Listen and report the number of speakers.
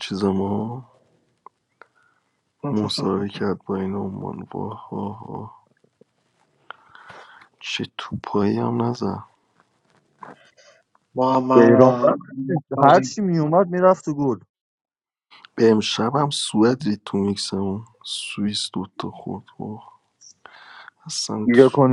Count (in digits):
3